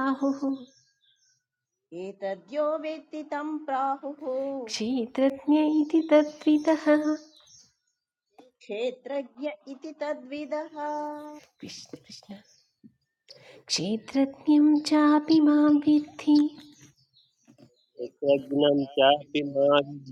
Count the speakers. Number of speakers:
3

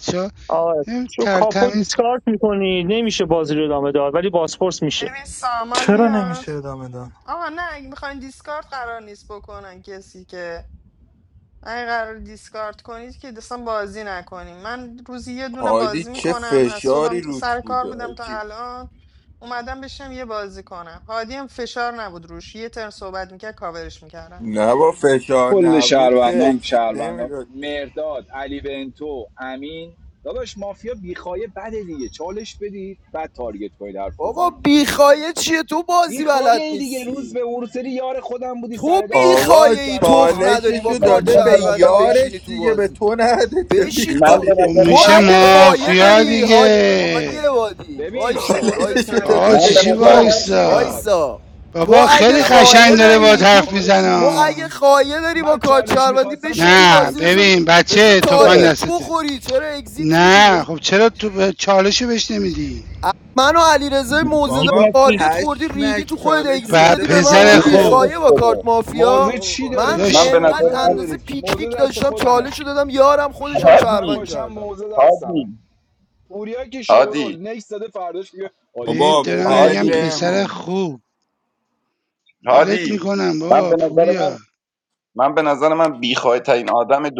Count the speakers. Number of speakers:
8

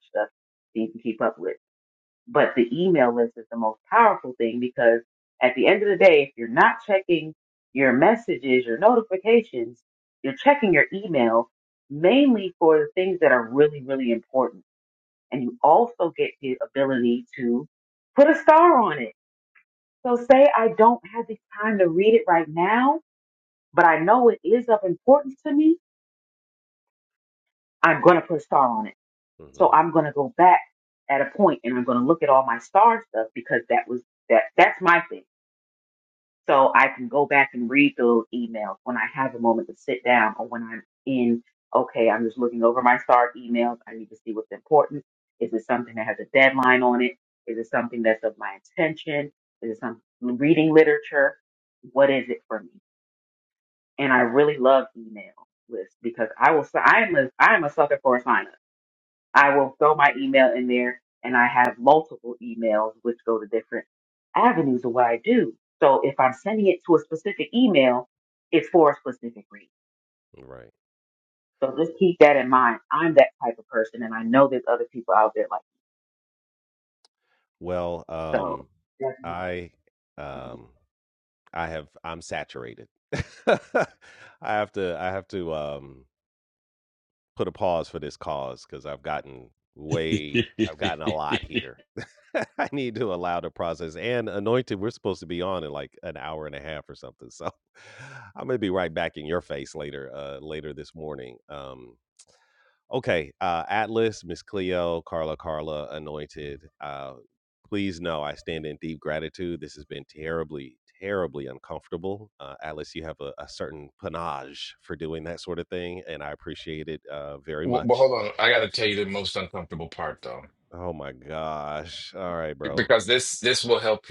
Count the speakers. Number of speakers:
3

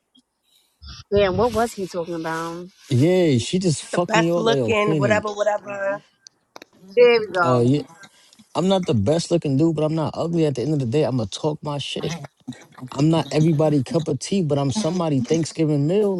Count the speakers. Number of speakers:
3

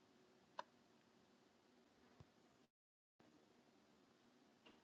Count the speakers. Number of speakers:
0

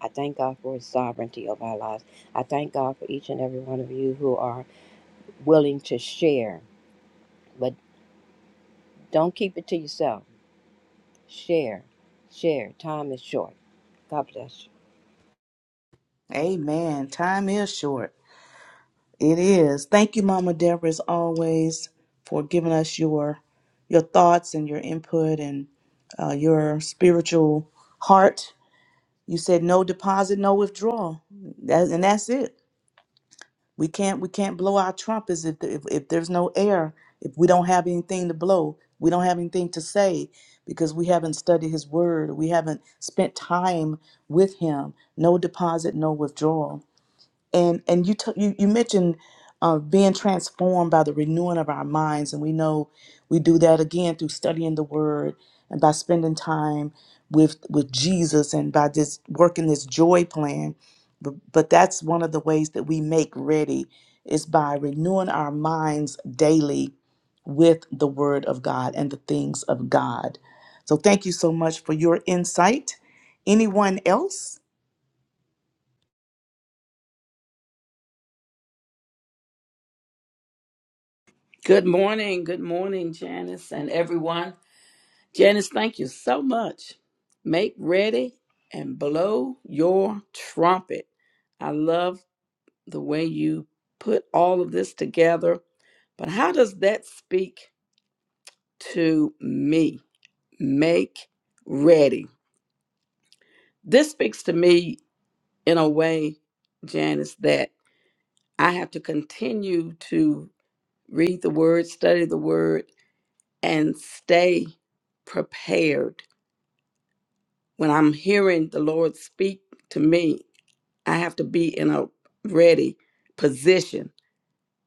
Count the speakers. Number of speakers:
3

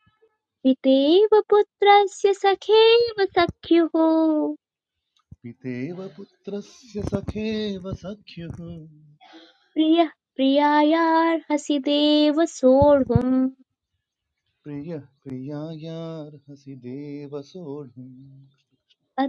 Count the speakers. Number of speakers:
2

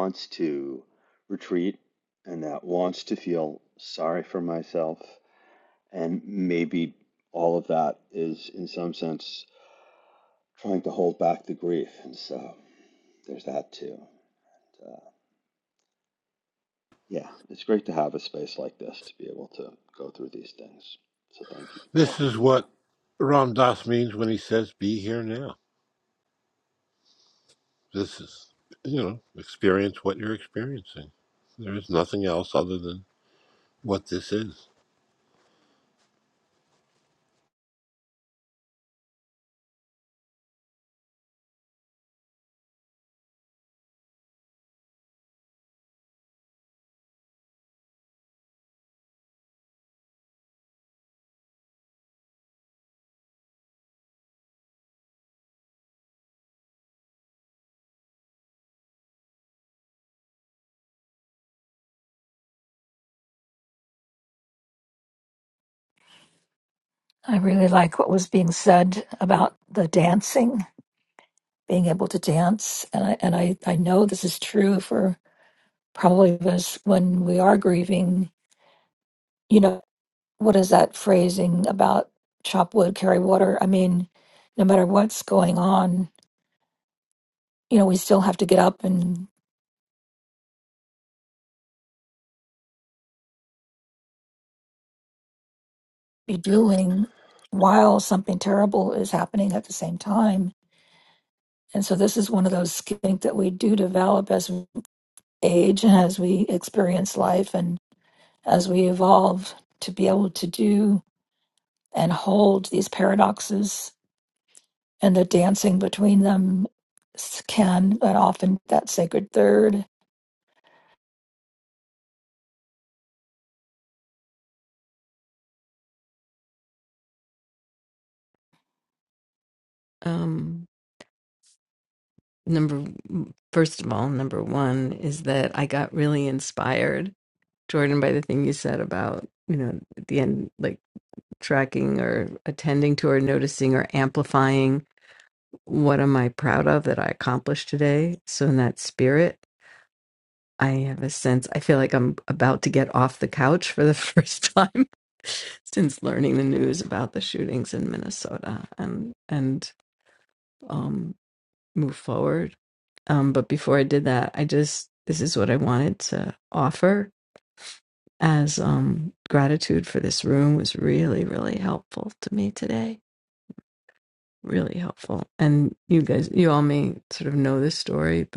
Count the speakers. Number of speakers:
4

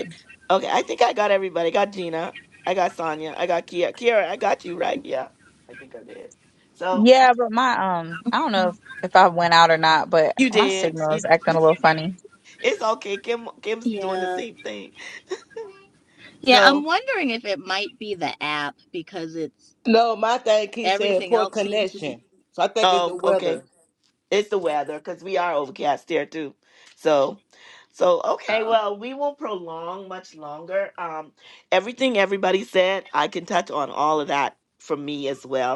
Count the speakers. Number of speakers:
4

